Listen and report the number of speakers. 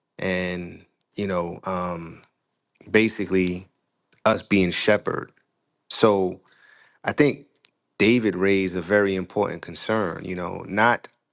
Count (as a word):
one